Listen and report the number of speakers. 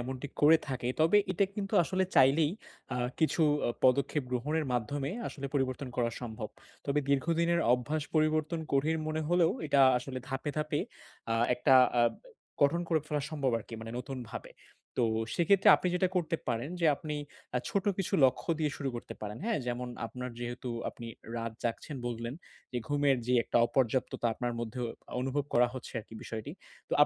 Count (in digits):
1